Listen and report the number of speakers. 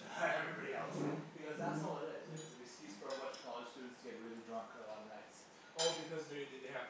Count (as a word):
two